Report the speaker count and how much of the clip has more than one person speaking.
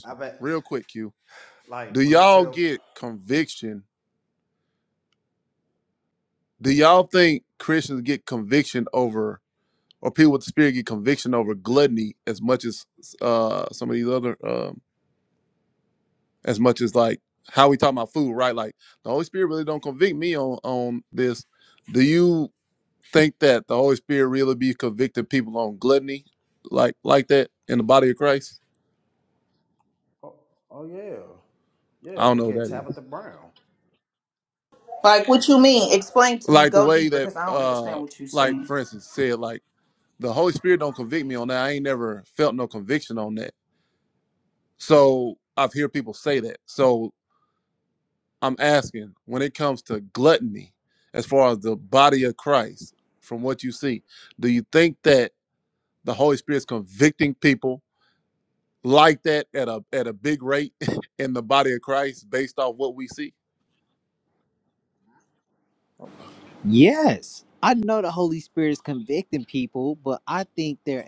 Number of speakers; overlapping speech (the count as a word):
four, about 5%